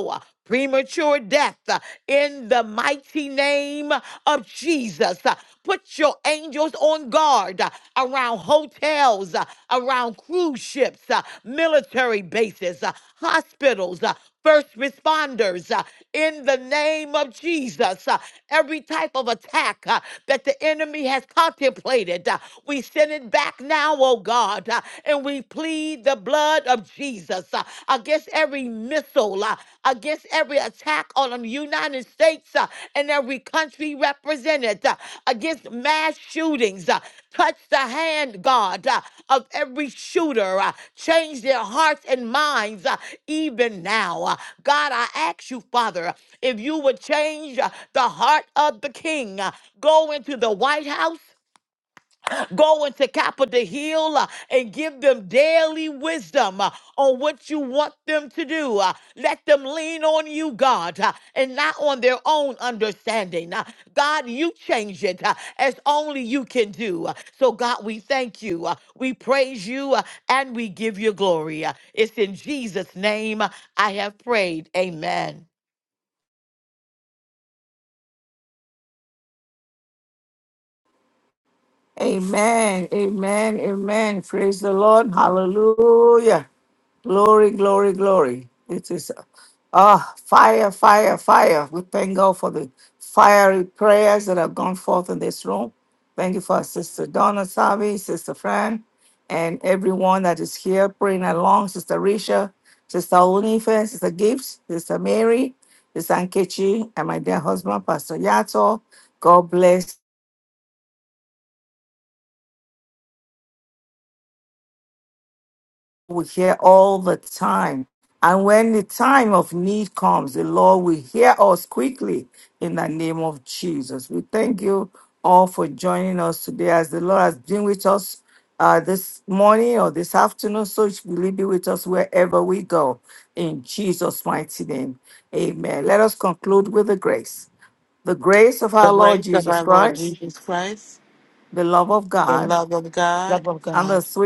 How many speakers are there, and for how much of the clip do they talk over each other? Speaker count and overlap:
3, about 1%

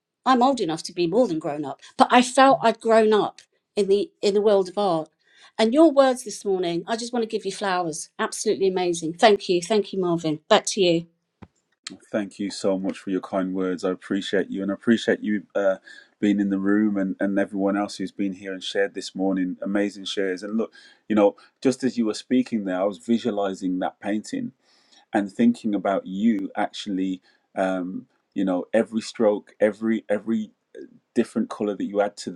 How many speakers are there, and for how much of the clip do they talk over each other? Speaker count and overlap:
2, no overlap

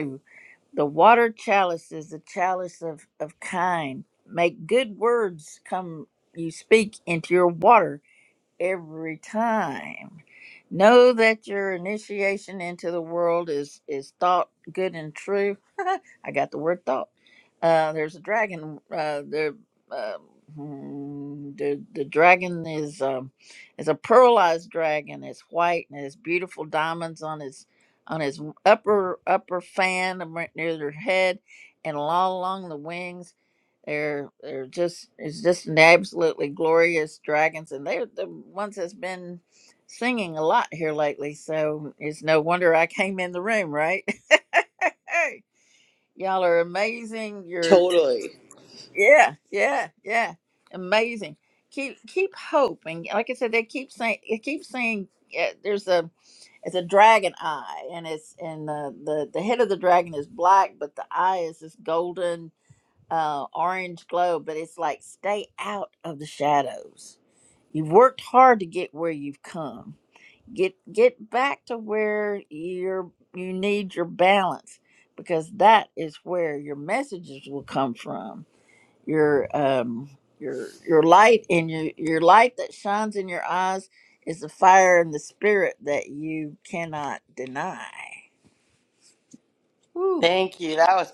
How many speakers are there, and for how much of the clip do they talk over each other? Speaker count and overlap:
2, under 1%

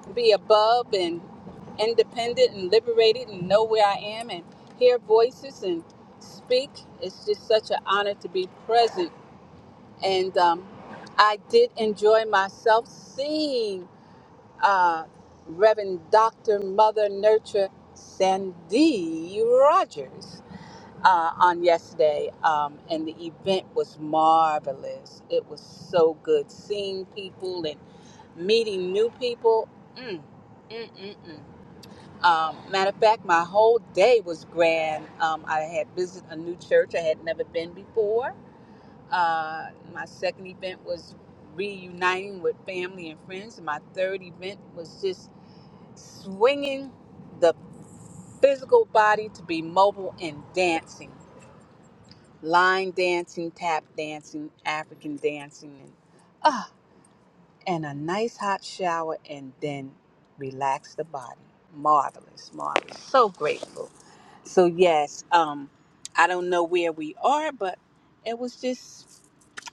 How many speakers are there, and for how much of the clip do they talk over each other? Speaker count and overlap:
1, no overlap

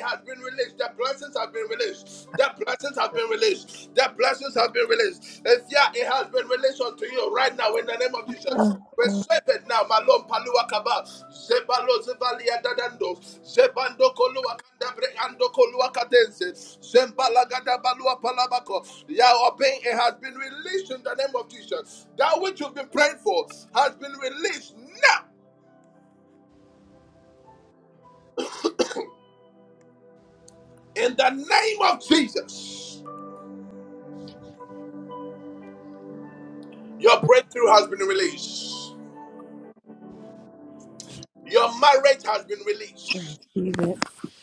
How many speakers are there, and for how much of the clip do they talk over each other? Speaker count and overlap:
2, under 1%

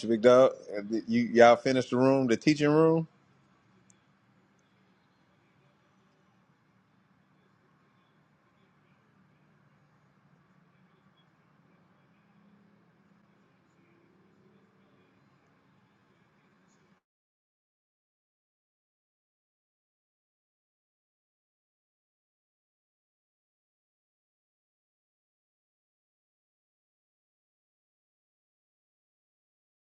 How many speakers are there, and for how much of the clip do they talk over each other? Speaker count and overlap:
1, no overlap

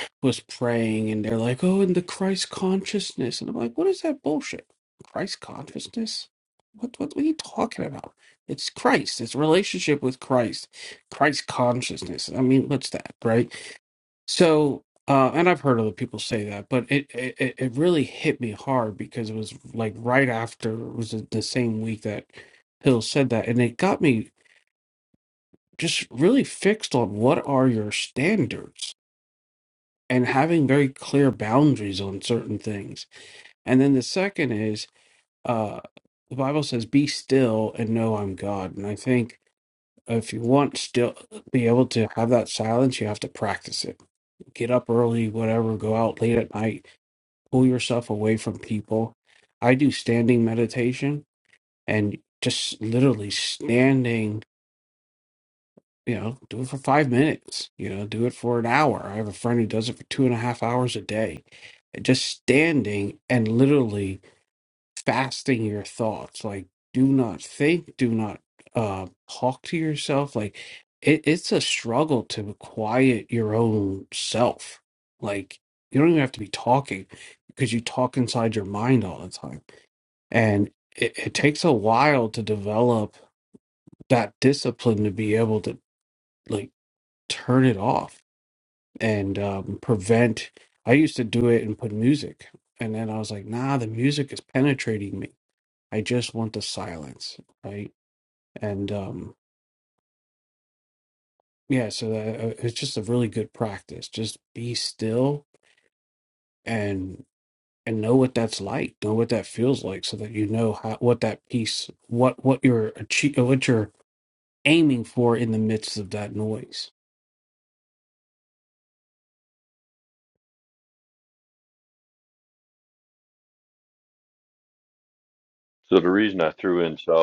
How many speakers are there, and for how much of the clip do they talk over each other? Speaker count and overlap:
2, no overlap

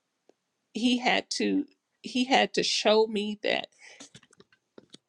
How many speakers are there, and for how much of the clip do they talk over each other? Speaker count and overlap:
1, no overlap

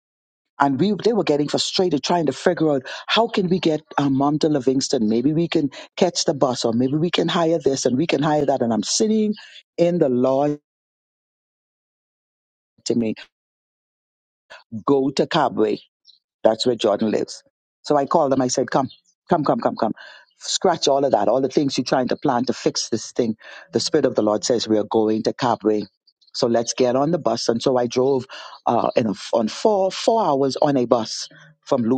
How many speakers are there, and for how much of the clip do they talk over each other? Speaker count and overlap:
1, no overlap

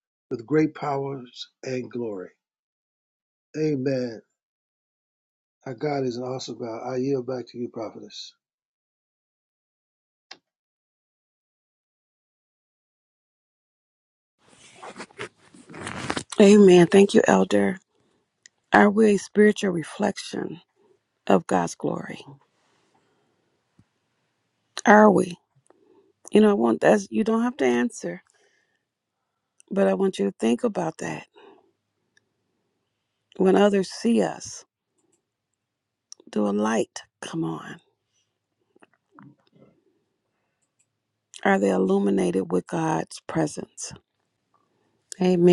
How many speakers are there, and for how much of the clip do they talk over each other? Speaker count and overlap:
2, no overlap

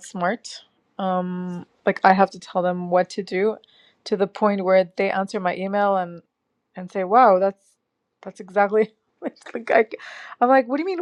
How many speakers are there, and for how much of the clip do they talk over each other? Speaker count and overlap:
1, no overlap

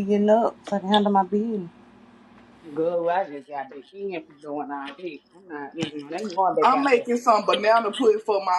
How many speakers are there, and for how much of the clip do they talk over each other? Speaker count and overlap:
3, about 5%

